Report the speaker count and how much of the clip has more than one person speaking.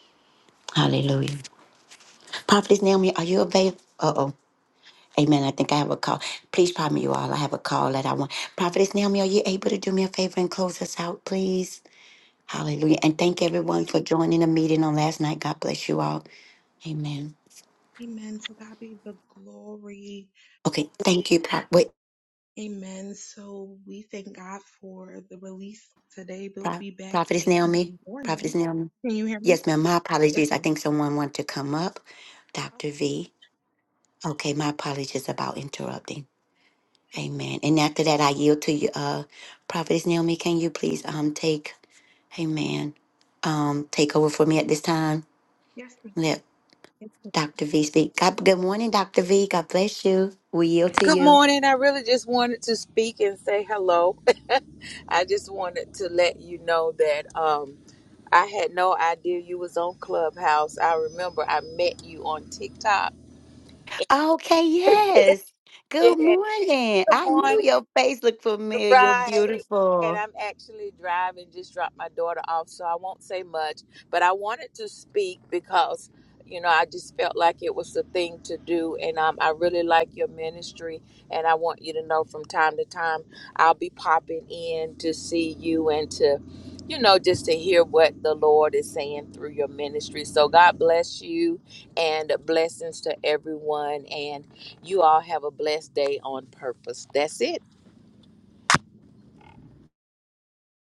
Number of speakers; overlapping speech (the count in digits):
3, about 5%